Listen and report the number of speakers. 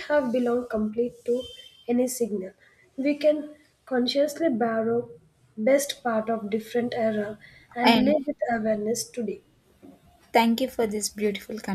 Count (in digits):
2